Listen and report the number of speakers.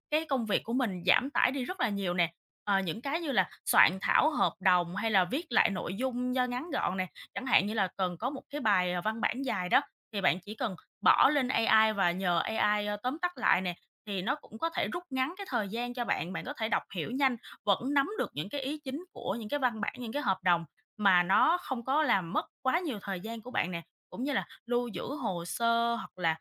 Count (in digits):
1